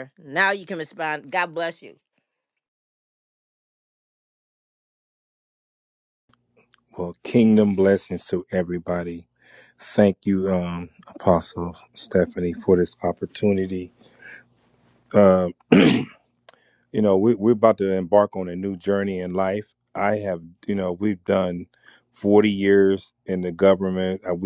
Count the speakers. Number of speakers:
2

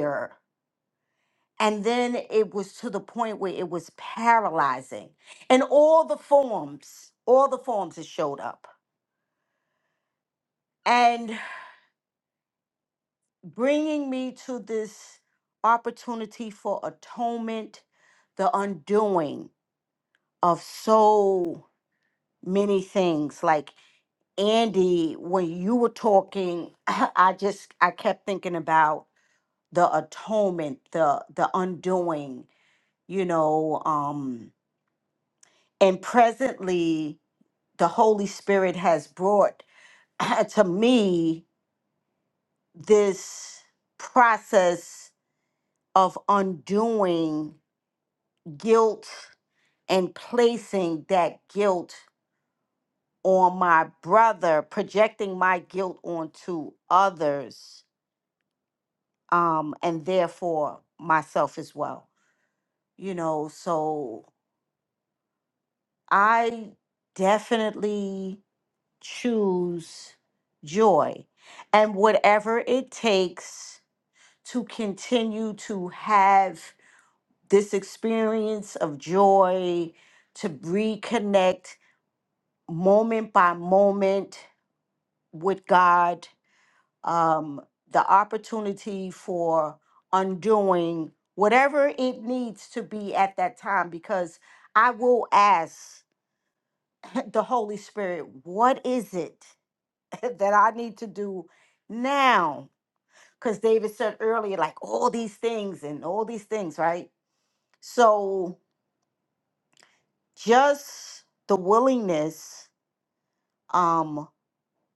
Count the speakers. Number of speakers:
1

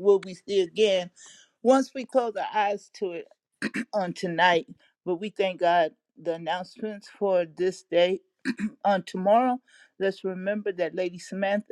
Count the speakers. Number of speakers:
1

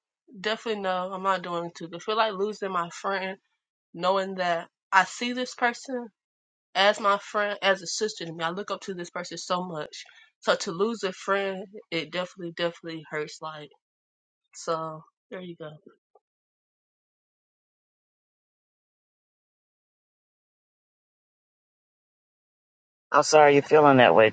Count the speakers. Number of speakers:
2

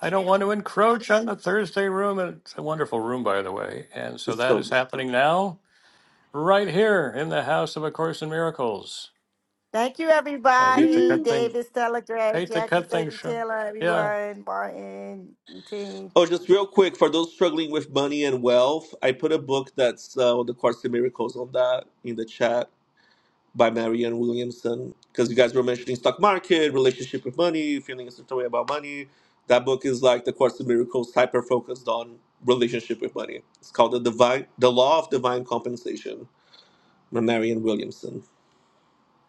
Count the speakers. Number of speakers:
3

